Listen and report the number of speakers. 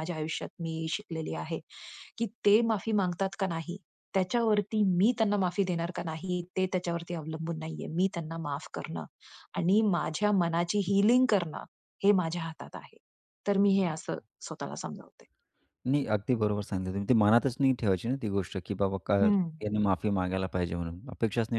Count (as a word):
two